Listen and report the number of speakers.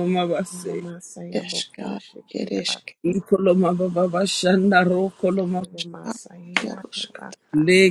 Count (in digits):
3